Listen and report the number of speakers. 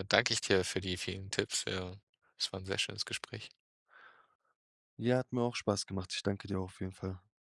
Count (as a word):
two